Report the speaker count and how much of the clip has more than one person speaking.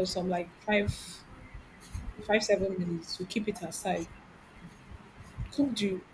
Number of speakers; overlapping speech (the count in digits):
1, no overlap